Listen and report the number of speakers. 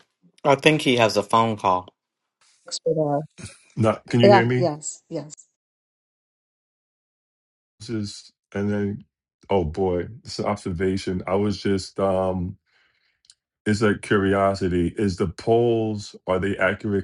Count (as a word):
three